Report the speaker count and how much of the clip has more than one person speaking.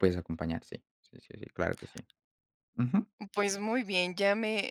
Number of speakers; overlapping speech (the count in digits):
2, no overlap